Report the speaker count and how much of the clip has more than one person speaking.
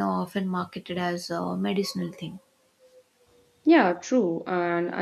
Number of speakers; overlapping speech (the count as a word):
two, no overlap